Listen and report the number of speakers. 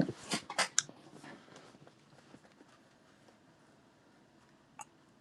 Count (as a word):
zero